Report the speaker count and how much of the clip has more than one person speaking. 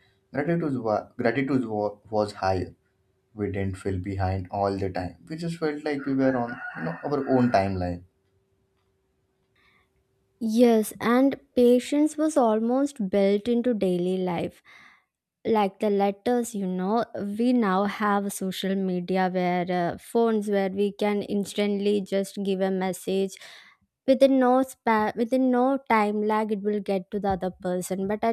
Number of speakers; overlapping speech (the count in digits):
2, no overlap